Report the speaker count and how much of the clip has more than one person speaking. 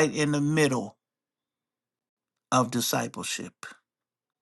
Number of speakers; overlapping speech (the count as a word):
one, no overlap